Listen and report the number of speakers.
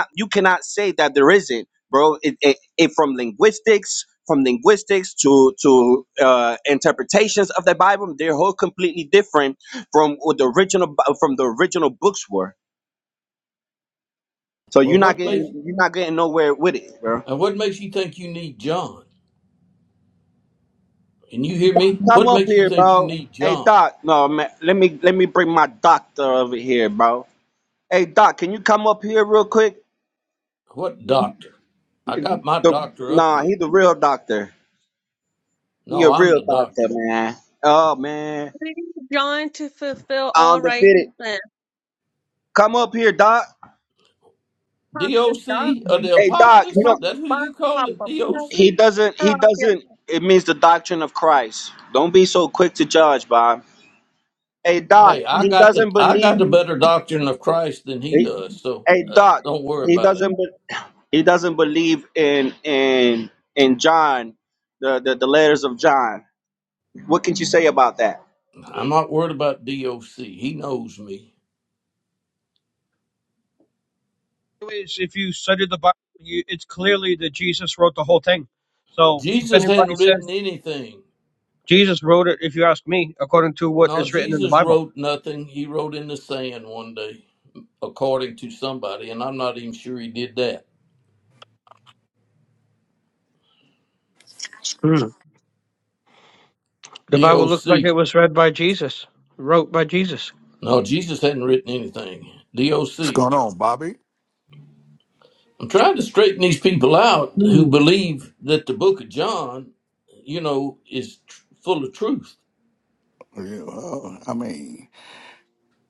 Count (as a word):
five